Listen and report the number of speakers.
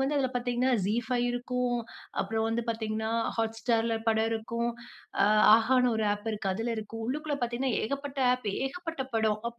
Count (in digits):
1